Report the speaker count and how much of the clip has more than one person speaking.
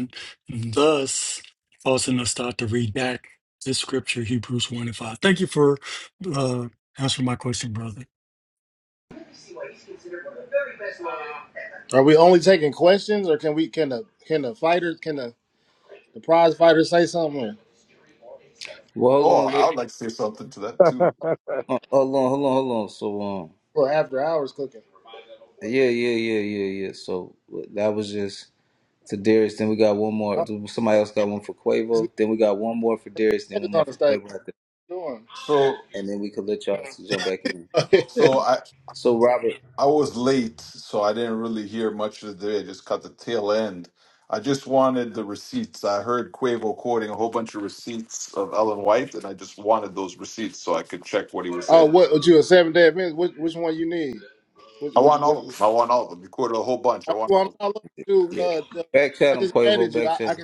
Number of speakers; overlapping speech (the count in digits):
4, about 7%